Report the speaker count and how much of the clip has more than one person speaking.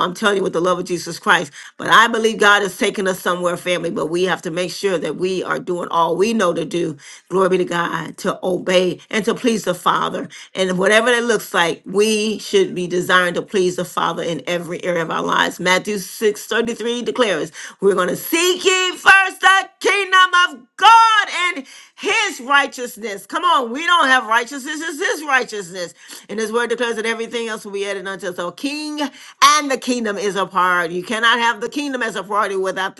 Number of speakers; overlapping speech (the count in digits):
1, no overlap